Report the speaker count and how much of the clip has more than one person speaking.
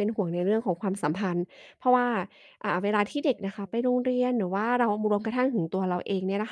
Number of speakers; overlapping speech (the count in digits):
1, no overlap